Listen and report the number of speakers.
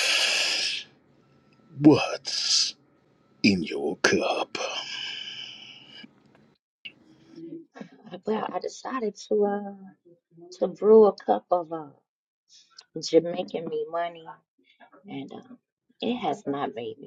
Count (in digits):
2